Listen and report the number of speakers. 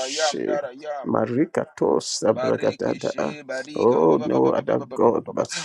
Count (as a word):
two